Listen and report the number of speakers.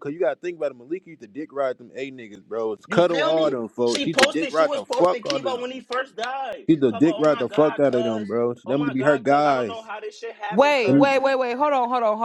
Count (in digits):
3